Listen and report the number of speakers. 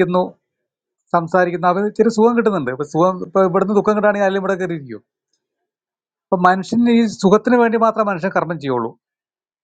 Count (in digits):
1